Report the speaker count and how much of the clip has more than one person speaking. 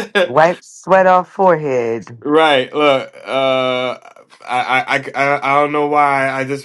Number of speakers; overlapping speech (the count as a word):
two, no overlap